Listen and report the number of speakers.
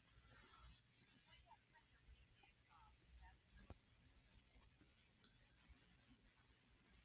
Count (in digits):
0